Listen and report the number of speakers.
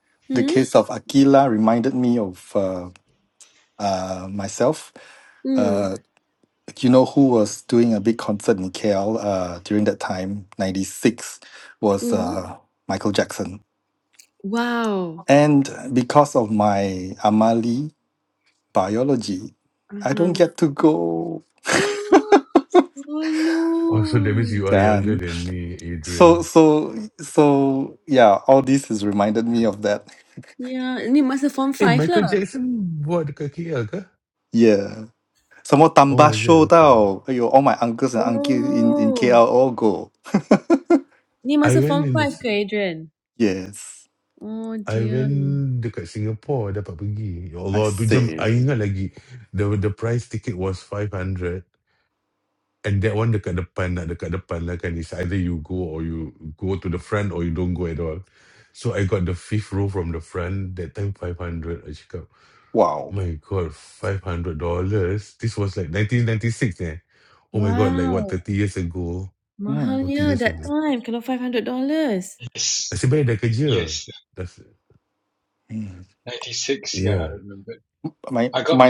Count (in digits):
4